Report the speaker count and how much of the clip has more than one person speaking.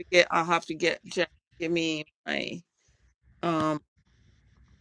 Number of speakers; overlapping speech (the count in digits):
1, no overlap